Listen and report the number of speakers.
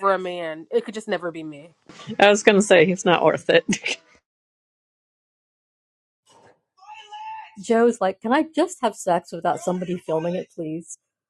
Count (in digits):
3